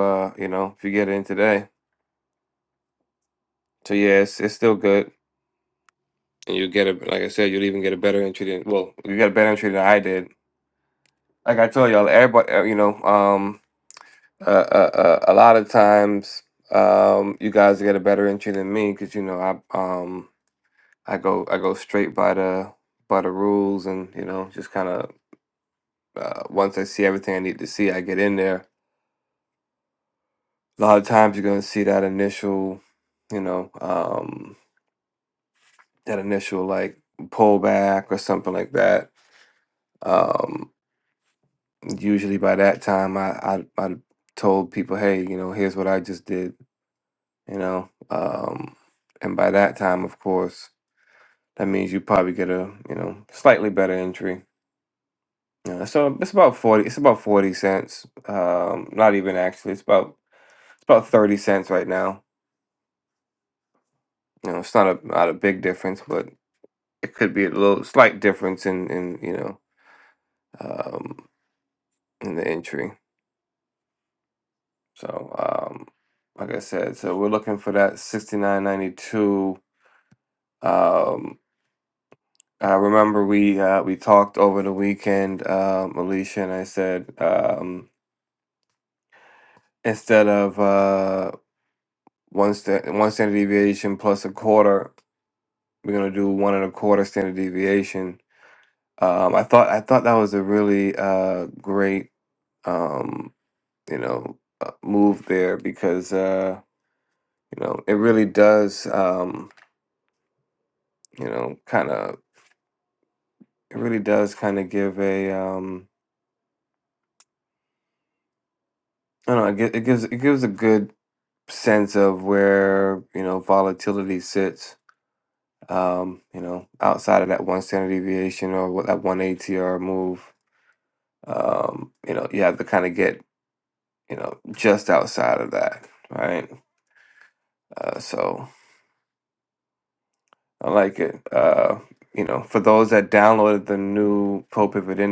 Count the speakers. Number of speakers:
one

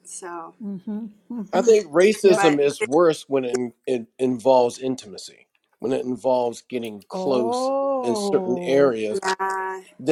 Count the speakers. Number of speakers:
three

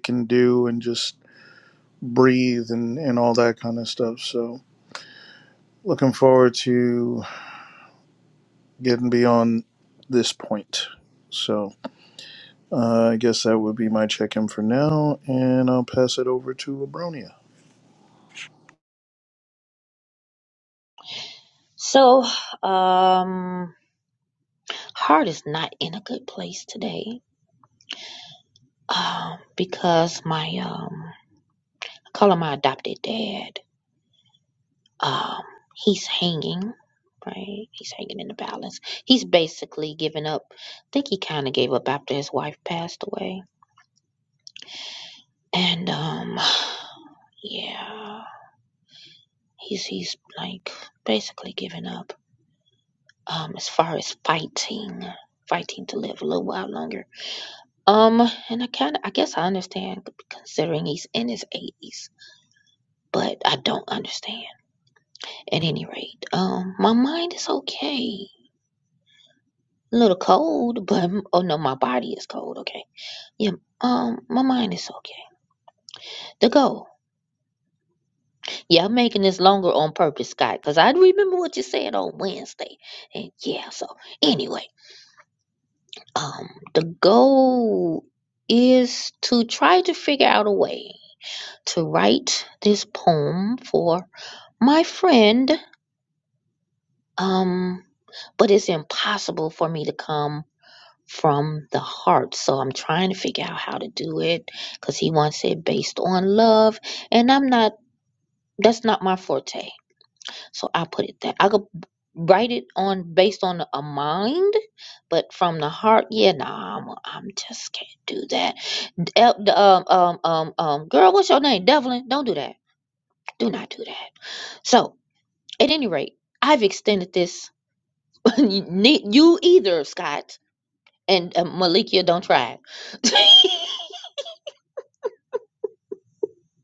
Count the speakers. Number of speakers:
two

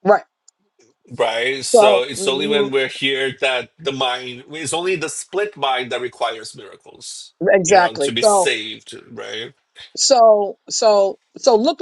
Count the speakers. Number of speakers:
two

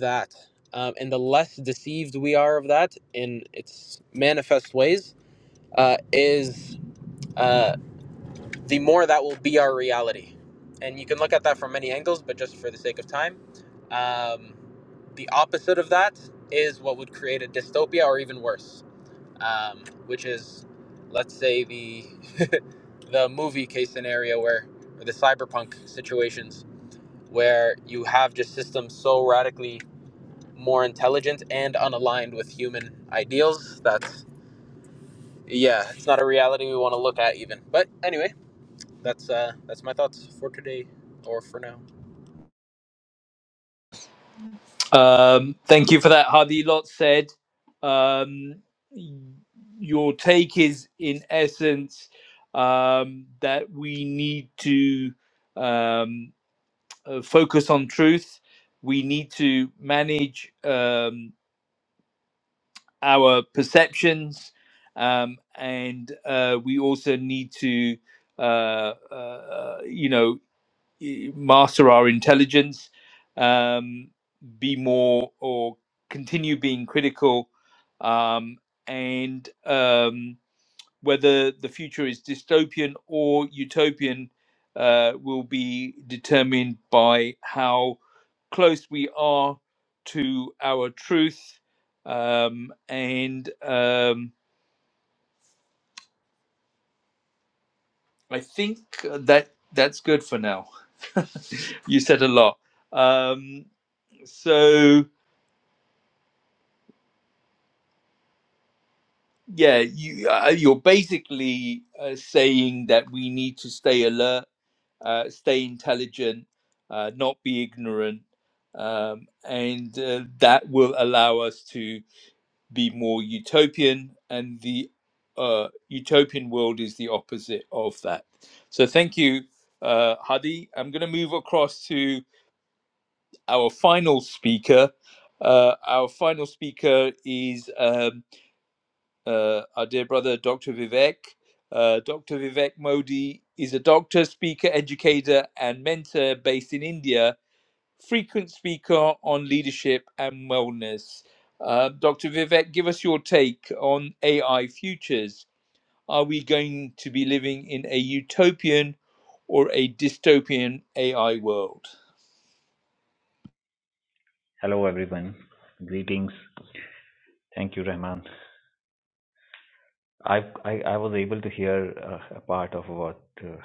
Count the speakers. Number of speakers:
three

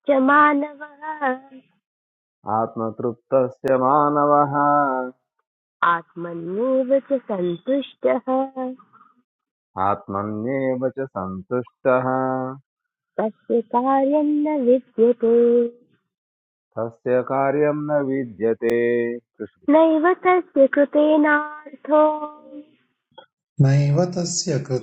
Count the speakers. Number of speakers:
three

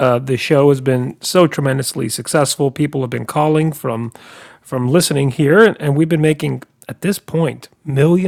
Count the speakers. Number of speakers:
one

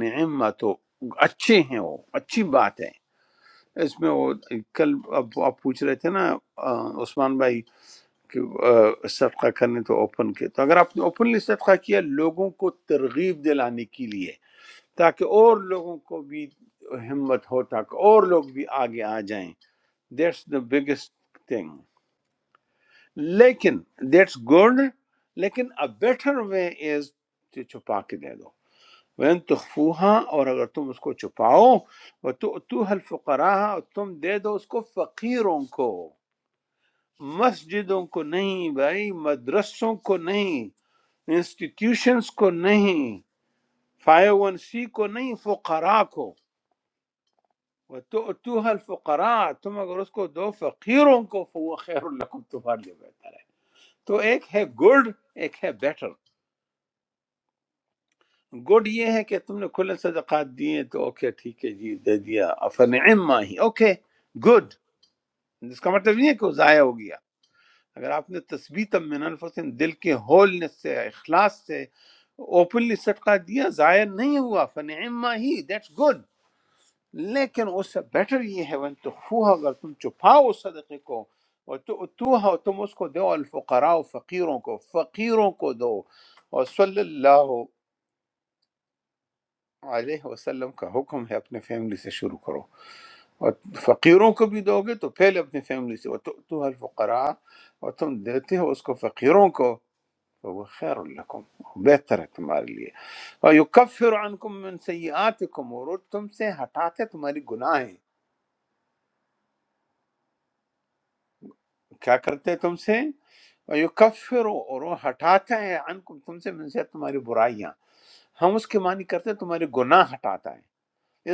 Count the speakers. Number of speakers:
one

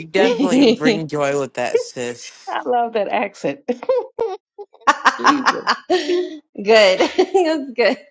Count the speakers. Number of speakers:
three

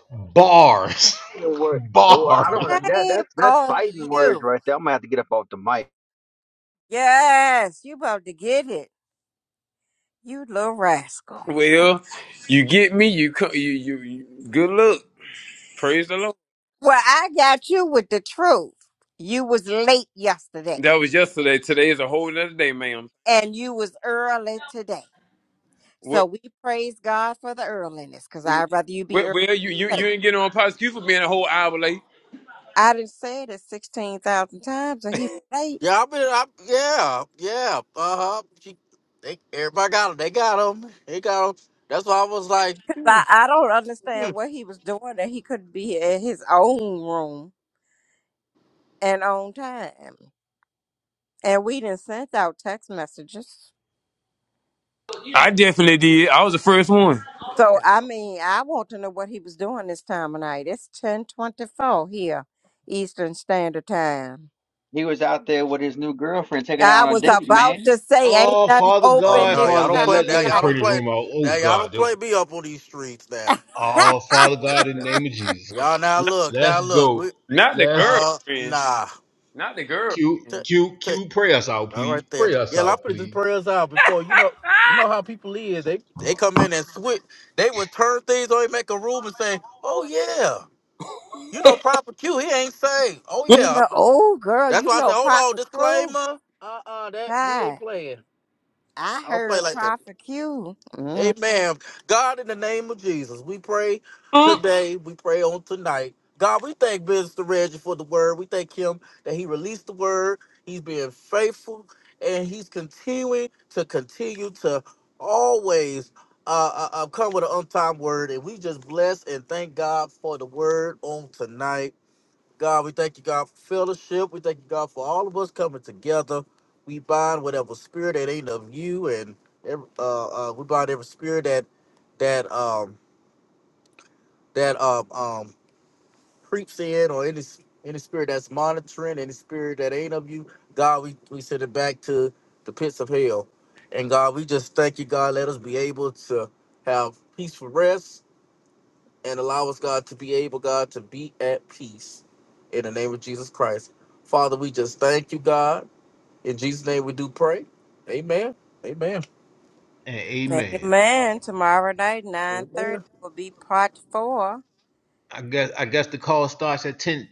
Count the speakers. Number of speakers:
five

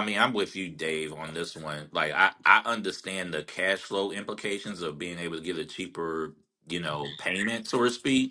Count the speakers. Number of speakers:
one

